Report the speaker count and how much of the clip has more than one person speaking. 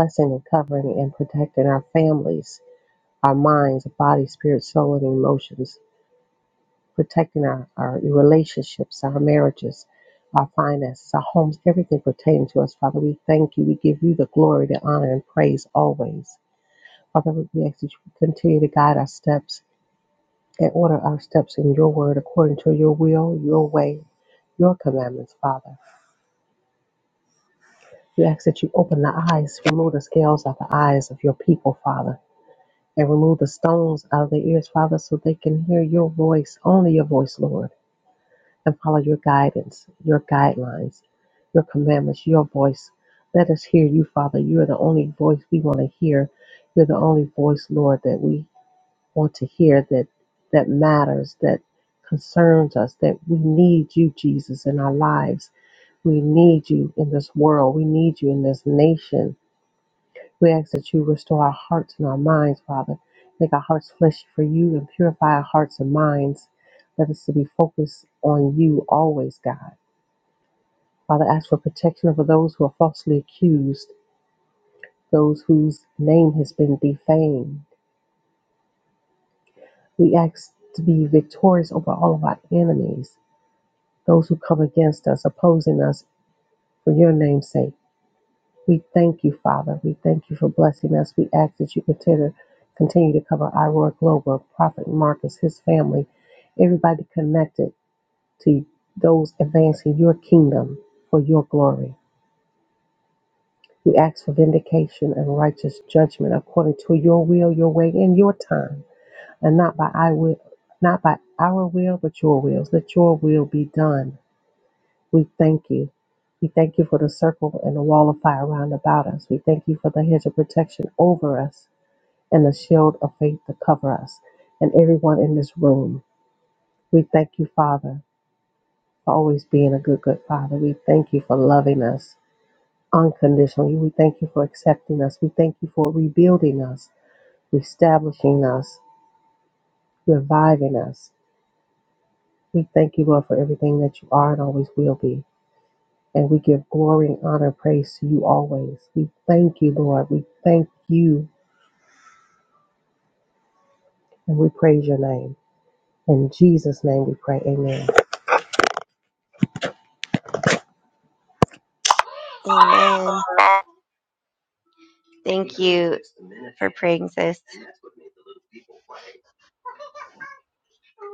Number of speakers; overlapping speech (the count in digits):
2, no overlap